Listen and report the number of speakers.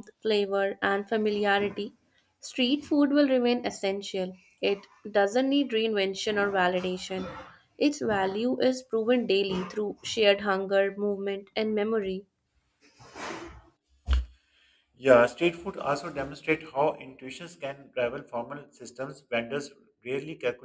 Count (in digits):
2